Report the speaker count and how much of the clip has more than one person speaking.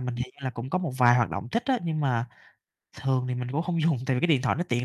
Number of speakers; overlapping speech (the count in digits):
1, no overlap